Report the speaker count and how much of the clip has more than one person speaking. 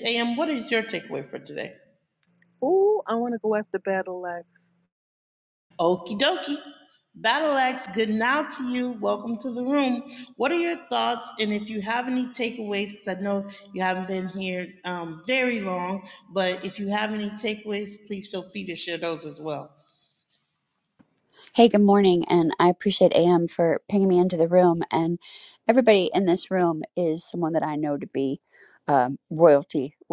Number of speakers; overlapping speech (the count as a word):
three, no overlap